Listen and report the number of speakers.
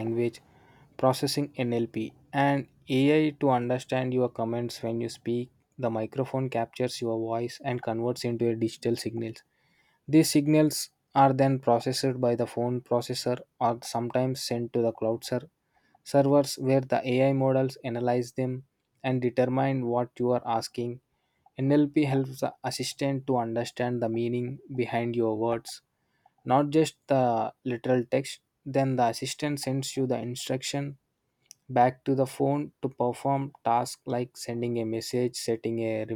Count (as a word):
one